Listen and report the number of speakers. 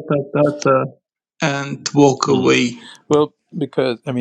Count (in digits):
2